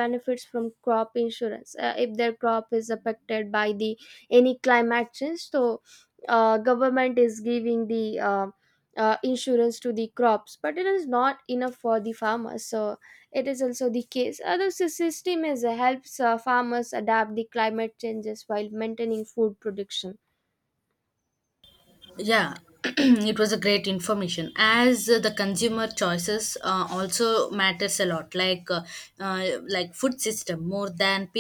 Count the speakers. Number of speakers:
two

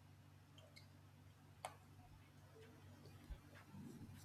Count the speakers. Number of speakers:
zero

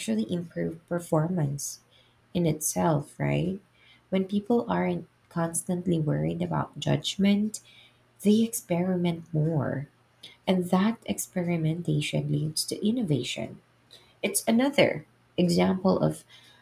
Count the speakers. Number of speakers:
one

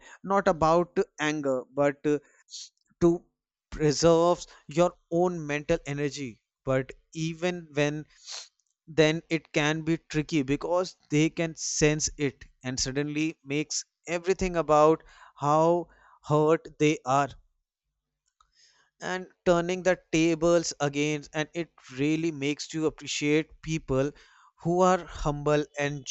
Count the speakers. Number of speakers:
one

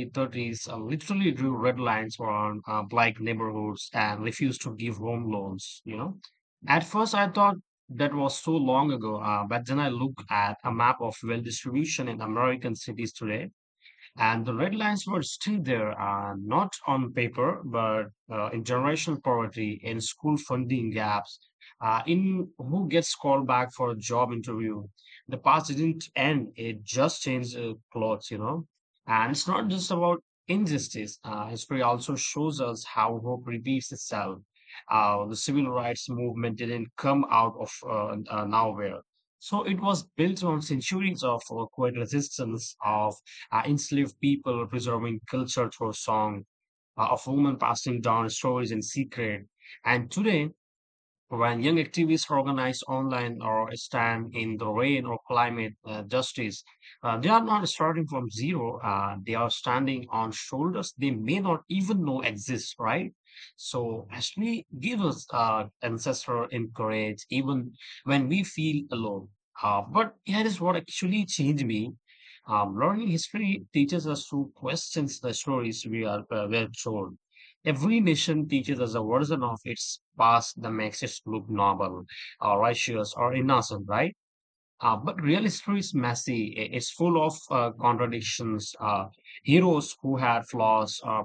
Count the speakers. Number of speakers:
one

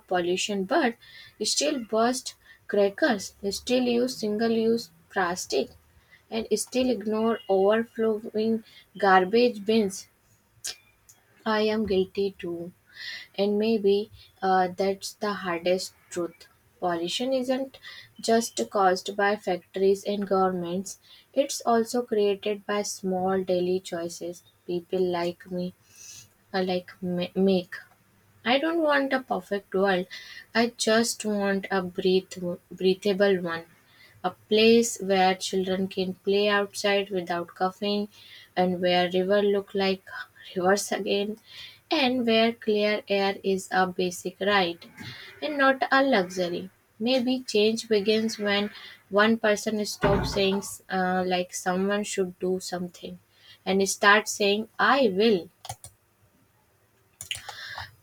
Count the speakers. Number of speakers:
one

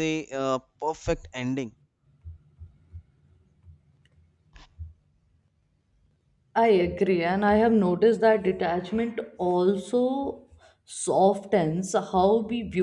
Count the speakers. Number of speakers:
two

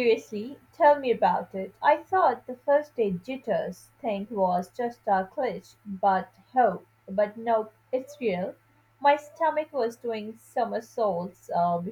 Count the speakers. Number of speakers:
one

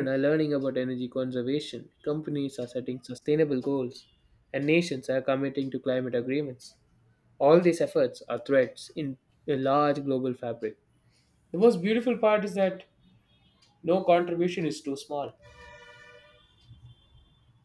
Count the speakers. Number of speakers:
one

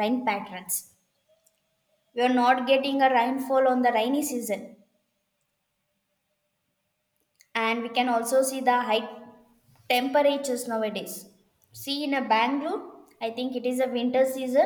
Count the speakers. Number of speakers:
one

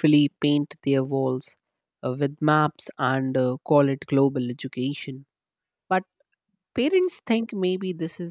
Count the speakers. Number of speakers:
one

